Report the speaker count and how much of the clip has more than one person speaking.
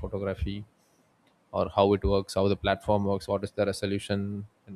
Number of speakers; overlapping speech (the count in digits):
1, no overlap